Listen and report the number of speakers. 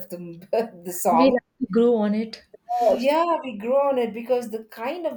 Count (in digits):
2